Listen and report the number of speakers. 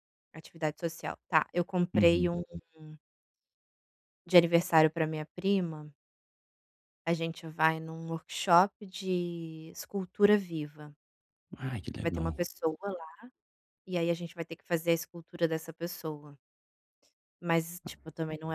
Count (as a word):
two